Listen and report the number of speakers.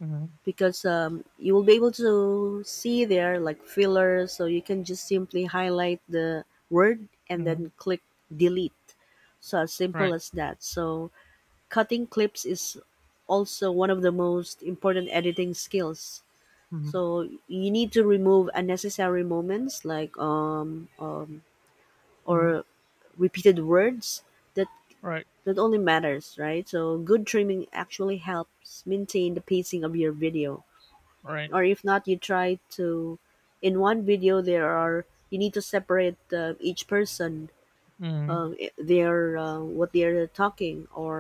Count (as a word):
two